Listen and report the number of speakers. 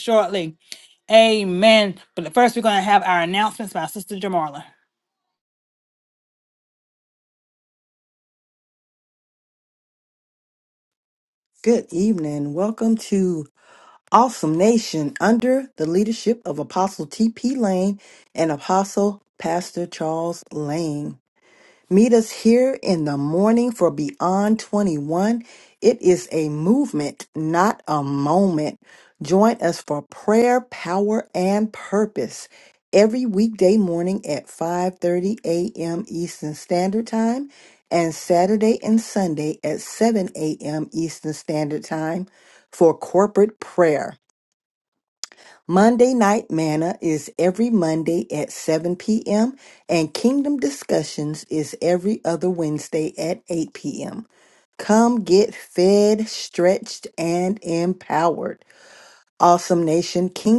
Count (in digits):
2